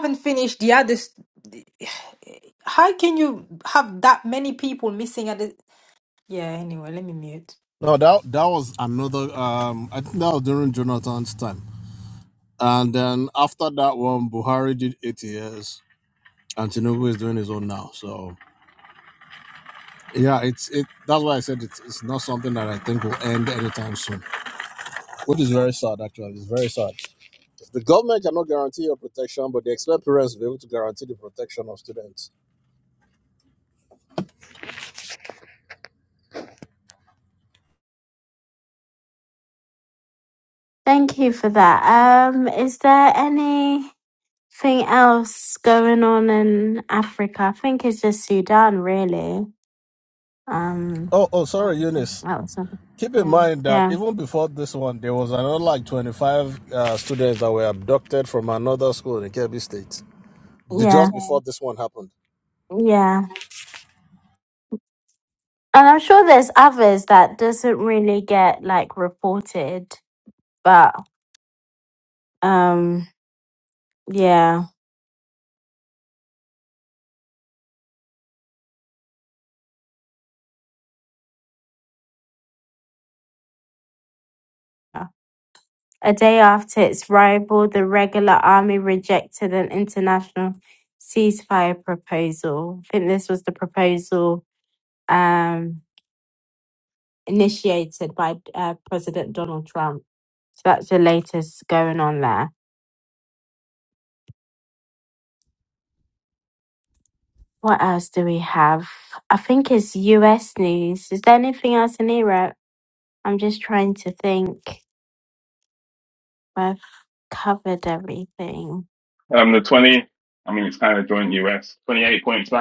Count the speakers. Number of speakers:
4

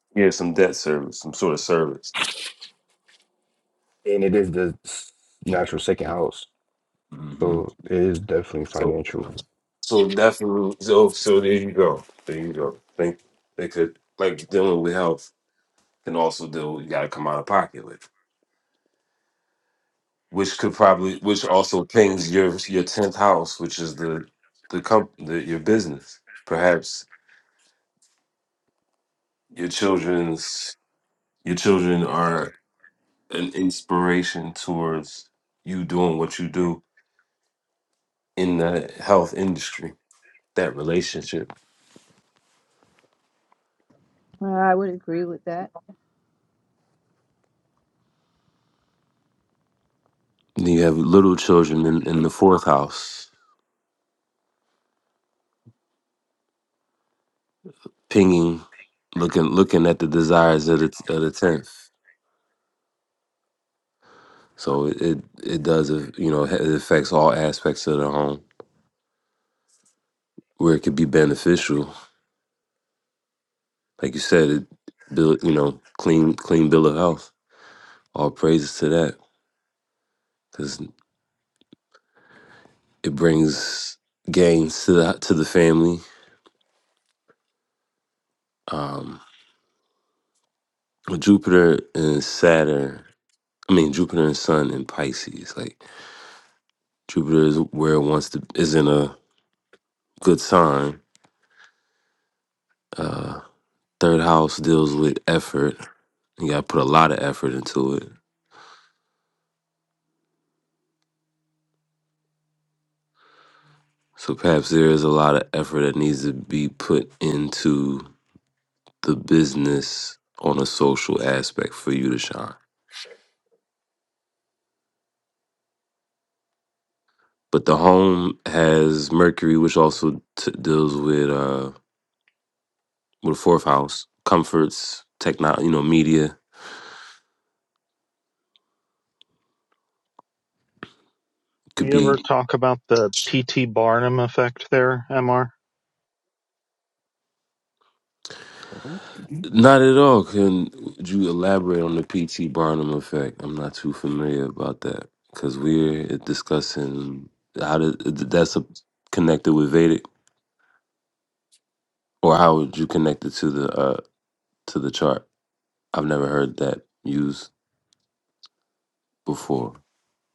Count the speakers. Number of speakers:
4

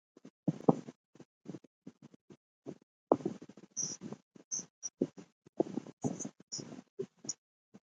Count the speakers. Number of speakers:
0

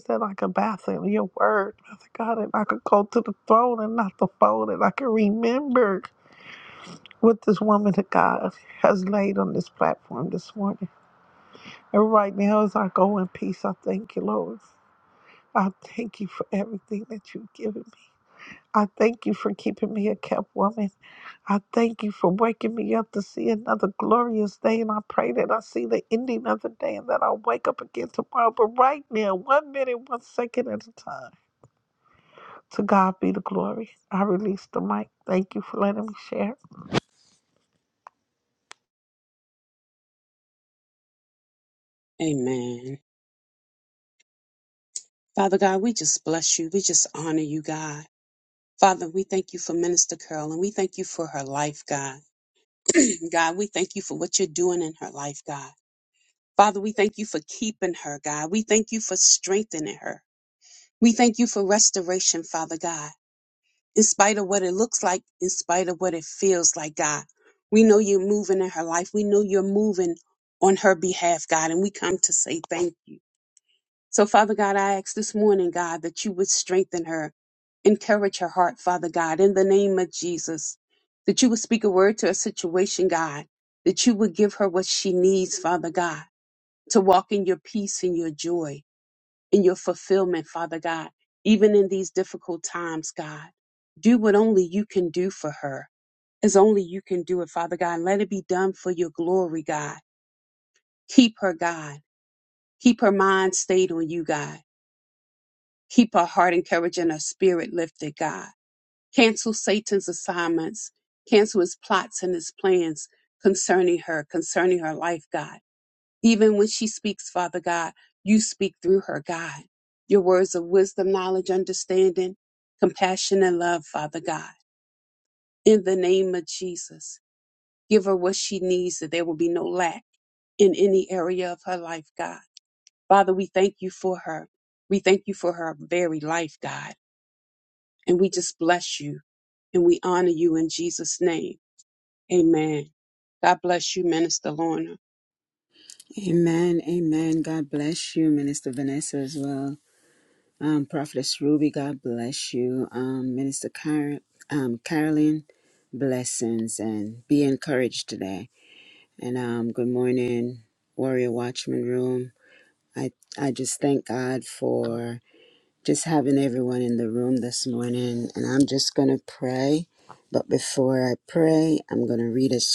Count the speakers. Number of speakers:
3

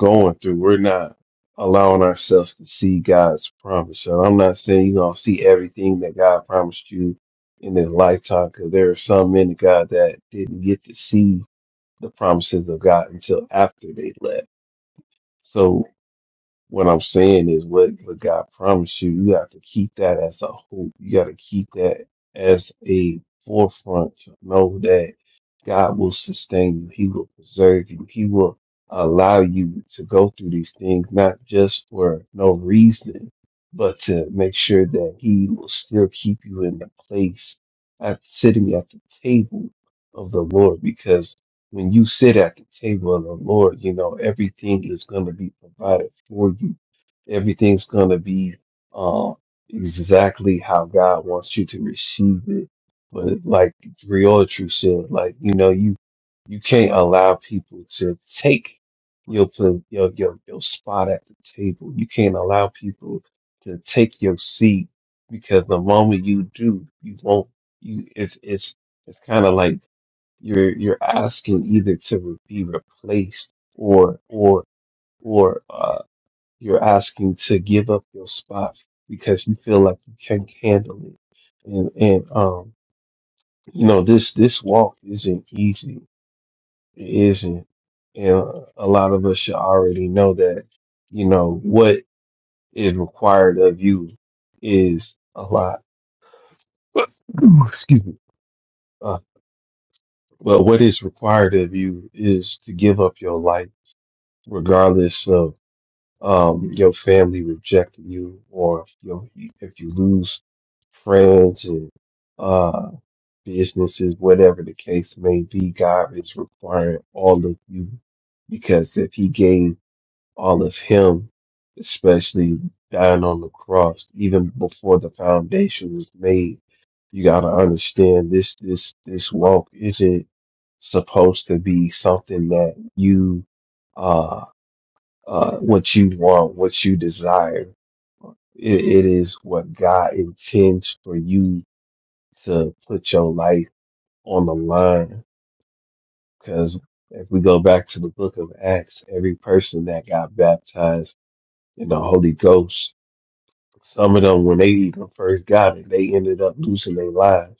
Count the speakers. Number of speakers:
1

